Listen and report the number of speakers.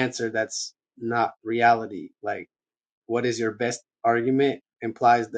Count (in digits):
1